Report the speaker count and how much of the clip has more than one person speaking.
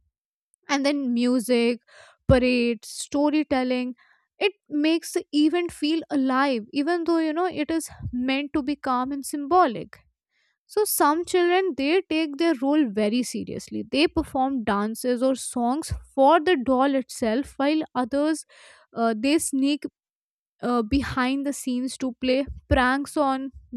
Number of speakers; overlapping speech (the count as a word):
one, no overlap